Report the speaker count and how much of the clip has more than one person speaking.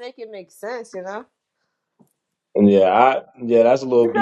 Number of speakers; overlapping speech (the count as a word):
two, about 5%